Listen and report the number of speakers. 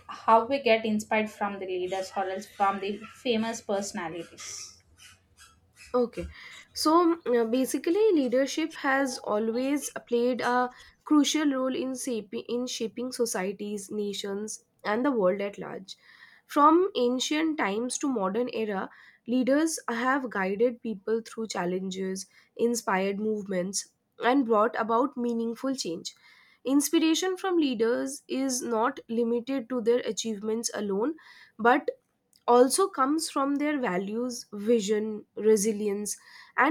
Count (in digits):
2